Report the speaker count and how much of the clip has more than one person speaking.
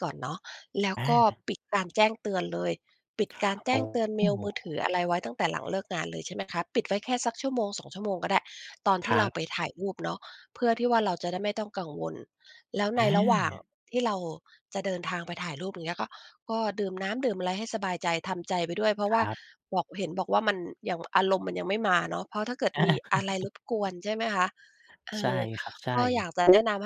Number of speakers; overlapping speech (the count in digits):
2, about 7%